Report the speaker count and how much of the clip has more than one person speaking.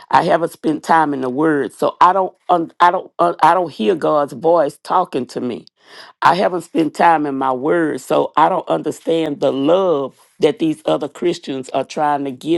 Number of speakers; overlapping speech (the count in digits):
1, no overlap